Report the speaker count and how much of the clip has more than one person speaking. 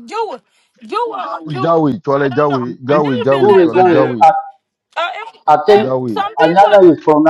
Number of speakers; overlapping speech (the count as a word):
three, about 43%